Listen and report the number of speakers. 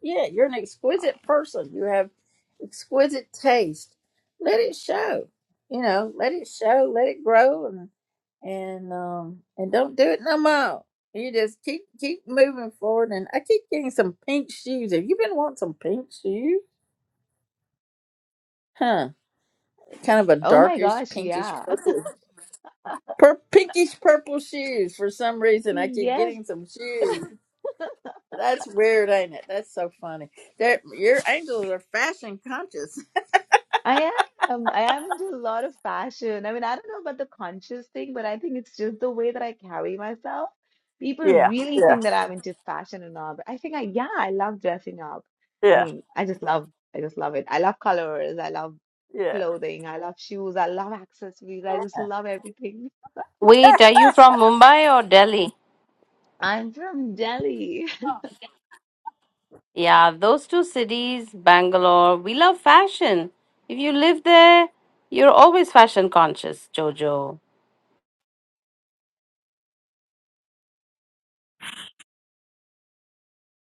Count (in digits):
3